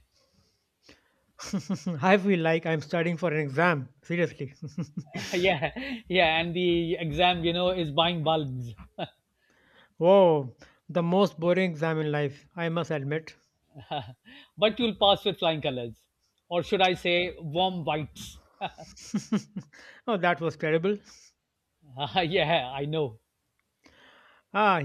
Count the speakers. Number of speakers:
two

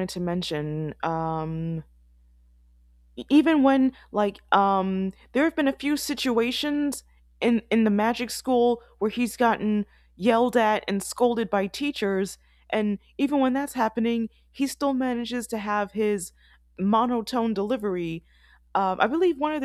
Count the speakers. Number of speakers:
one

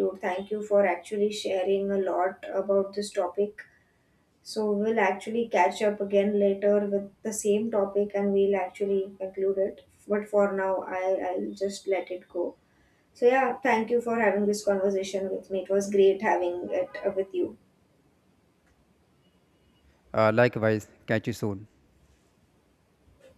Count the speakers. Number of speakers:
two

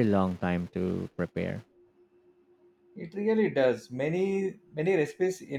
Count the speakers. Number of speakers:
two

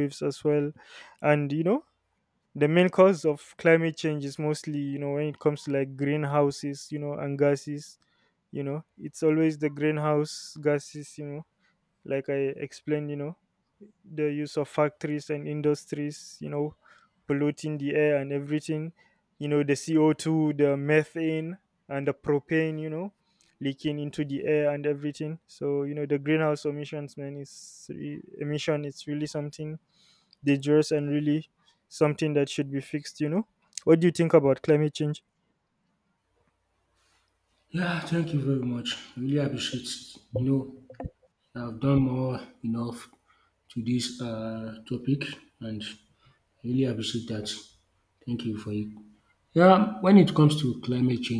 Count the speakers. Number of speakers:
two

